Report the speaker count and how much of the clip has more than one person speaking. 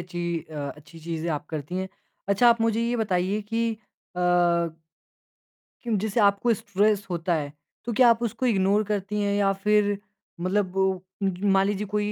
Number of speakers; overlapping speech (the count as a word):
one, no overlap